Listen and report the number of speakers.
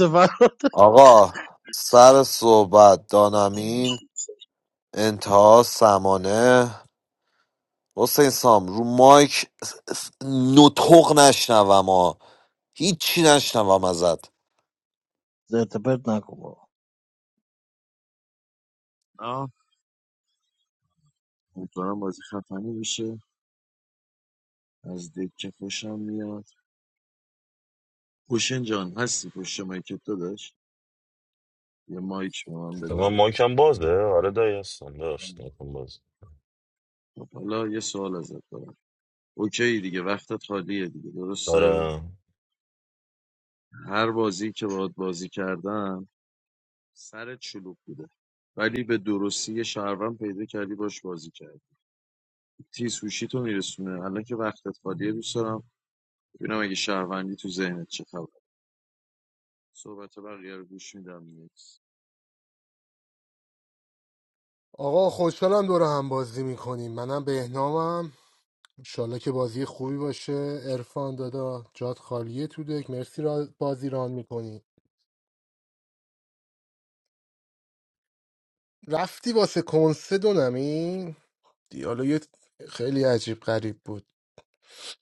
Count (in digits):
5